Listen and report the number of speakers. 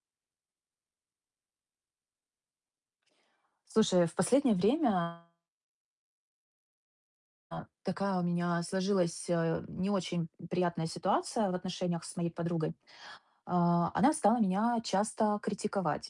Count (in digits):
1